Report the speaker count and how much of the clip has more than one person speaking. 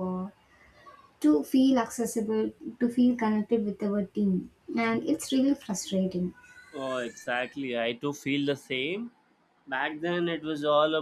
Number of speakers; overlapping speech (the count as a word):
two, no overlap